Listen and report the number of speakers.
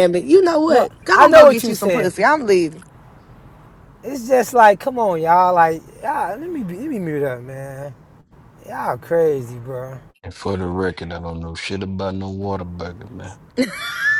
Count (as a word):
three